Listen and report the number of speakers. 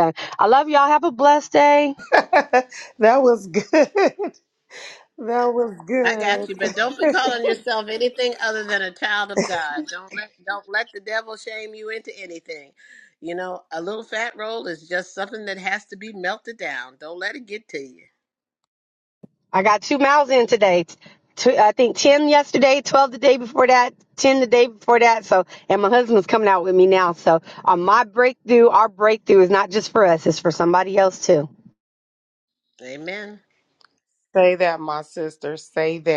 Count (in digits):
3